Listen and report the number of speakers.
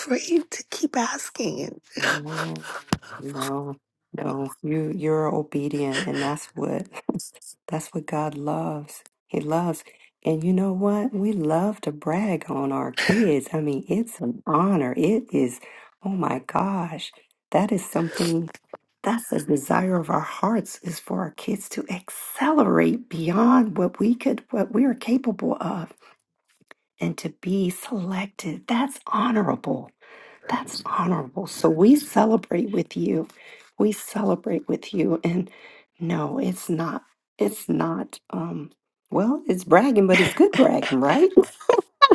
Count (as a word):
two